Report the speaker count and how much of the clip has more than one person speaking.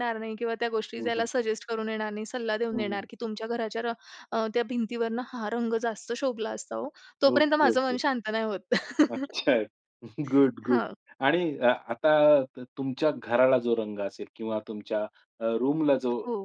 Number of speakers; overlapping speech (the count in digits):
2, about 9%